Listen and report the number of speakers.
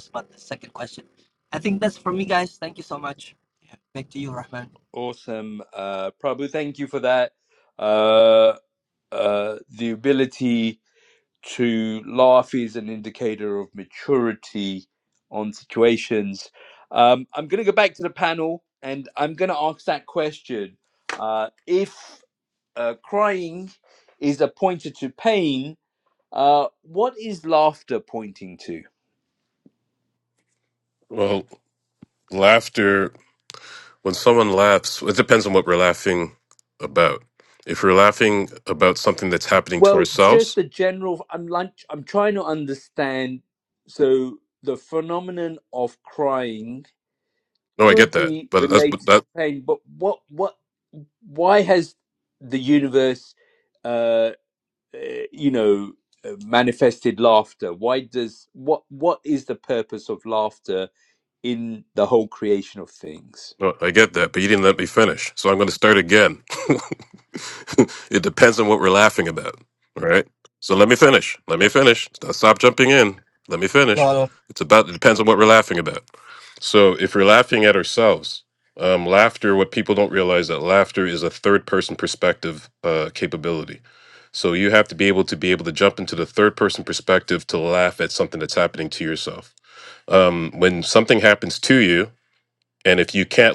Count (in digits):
3